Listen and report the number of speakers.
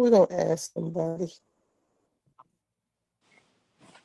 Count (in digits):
1